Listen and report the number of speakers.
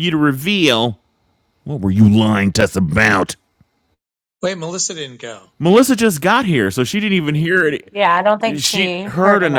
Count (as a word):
three